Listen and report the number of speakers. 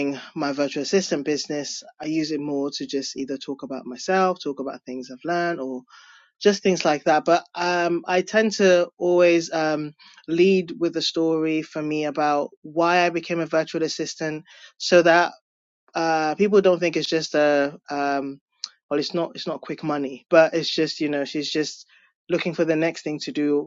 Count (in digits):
1